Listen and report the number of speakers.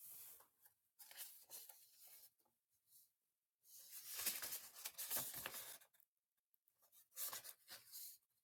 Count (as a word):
zero